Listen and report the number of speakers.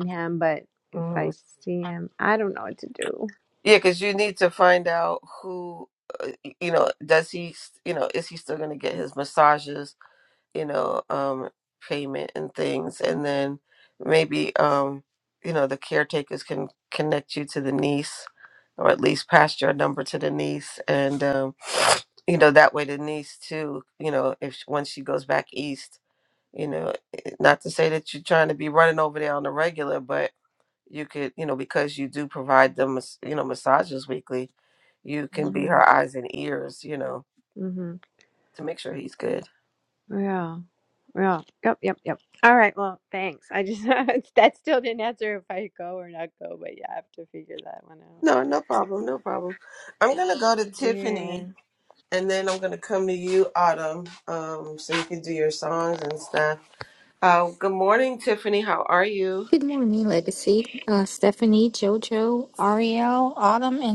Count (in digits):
3